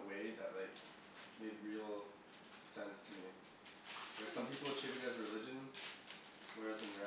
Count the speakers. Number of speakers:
one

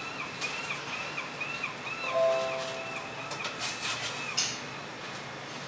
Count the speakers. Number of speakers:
zero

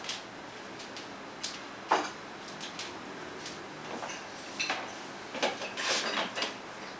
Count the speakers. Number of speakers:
zero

